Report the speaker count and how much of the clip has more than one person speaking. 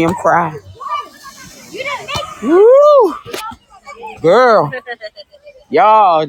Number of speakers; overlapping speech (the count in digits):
1, no overlap